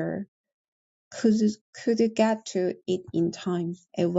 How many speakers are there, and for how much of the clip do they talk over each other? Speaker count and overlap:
one, no overlap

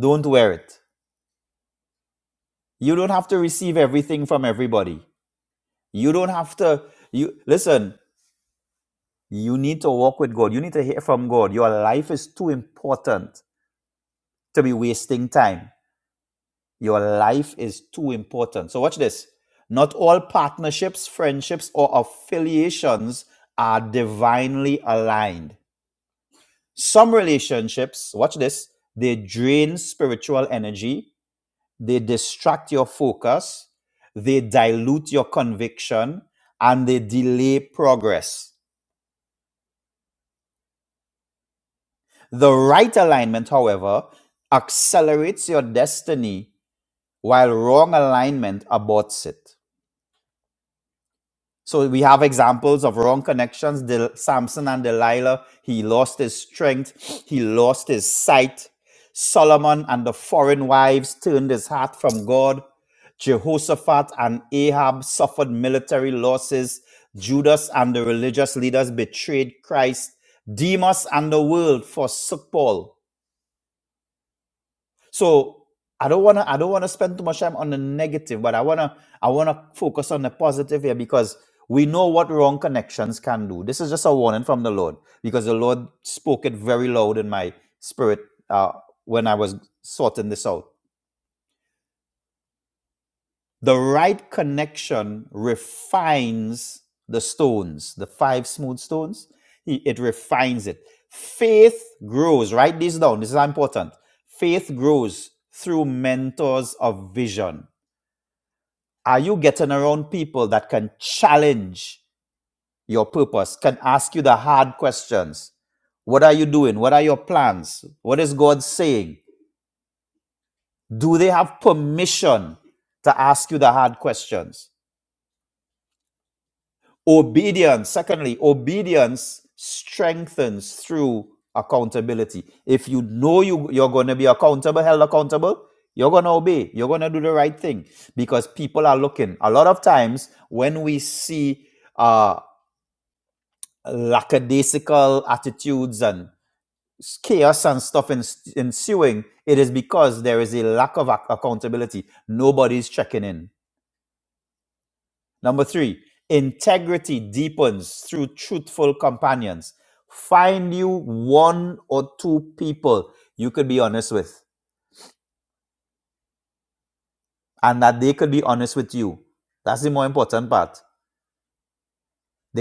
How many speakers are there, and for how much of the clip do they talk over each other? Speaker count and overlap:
one, no overlap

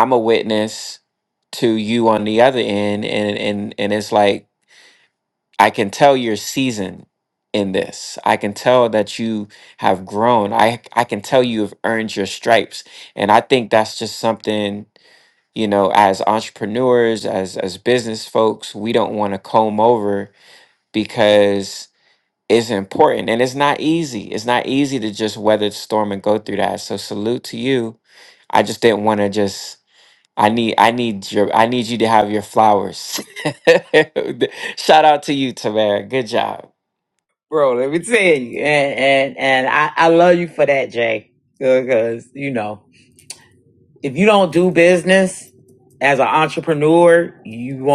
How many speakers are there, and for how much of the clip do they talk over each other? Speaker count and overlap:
two, no overlap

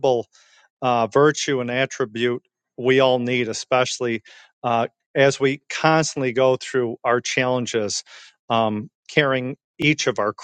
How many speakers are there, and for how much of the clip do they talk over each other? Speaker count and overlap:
one, no overlap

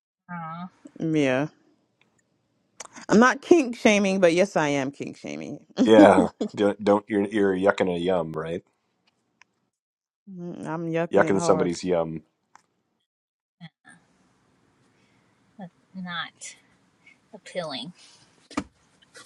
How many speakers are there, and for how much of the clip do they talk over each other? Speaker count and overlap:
three, about 3%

